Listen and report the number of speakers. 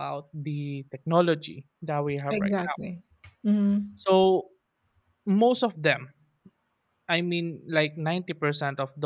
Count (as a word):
two